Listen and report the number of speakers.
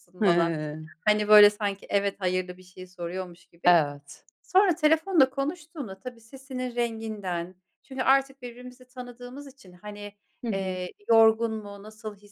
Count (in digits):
2